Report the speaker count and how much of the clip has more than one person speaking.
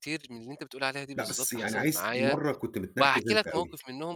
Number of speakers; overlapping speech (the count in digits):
2, about 47%